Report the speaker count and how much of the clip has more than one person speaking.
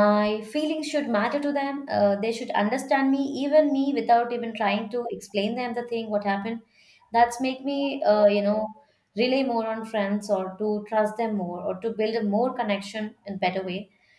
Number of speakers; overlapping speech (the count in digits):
1, no overlap